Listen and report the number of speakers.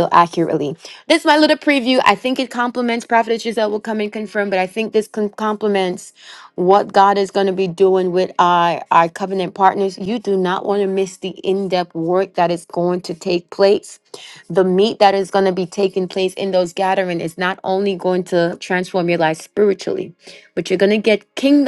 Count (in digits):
1